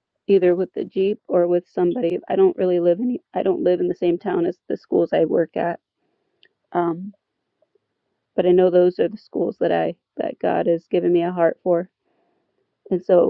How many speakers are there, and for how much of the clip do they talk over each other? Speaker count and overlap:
1, no overlap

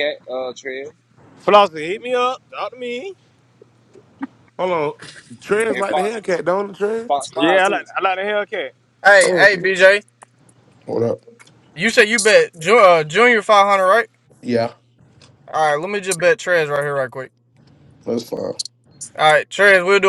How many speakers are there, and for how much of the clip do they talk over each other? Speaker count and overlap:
5, about 6%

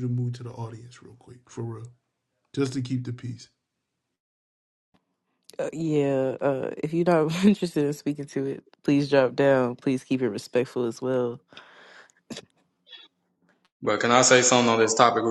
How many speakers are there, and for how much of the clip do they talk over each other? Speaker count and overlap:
3, no overlap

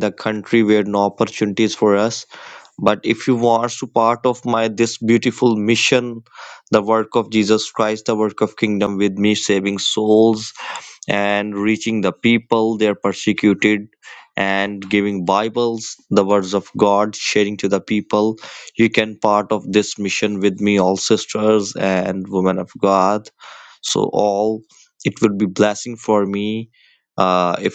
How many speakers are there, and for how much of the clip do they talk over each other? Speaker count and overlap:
1, no overlap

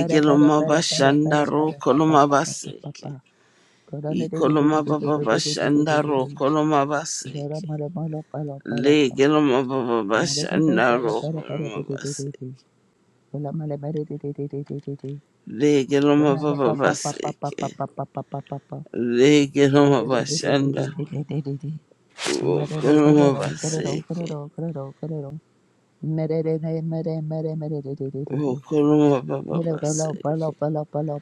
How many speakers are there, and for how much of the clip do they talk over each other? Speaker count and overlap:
2, about 45%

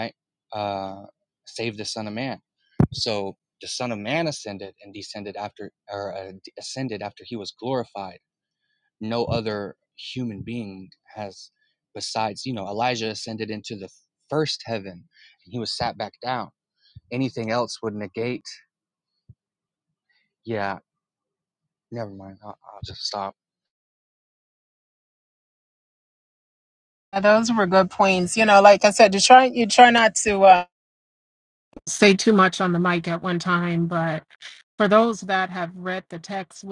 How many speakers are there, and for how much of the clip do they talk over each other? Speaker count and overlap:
2, no overlap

